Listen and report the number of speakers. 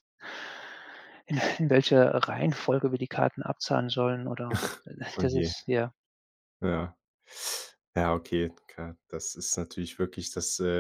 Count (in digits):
2